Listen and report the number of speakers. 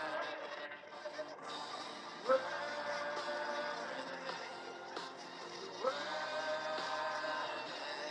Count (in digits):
0